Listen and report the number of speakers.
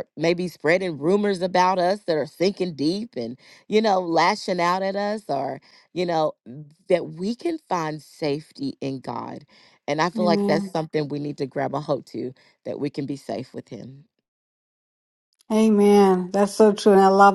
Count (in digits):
2